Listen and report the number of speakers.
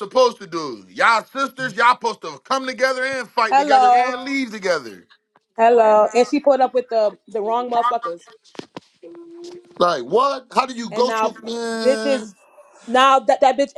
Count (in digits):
2